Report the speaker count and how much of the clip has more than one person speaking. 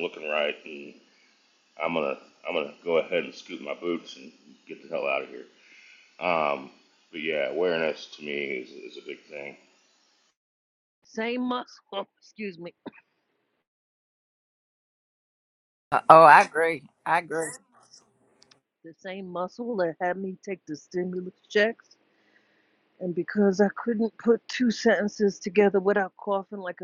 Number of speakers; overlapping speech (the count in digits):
3, no overlap